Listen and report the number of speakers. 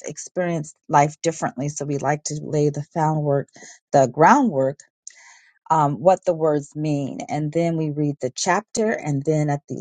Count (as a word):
one